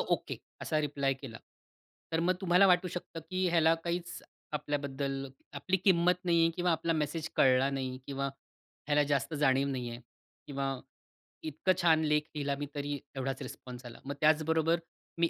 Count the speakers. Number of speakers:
1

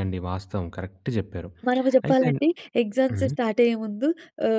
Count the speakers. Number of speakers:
2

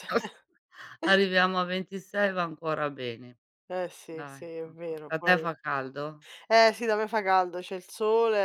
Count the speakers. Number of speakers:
2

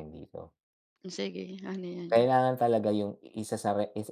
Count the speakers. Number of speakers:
2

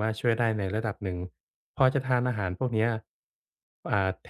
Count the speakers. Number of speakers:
1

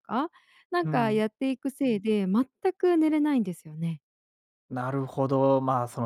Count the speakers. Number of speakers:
2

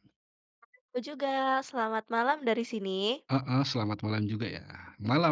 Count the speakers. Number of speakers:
2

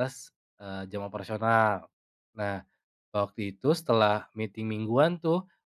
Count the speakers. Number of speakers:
1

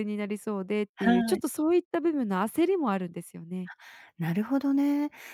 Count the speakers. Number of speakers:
2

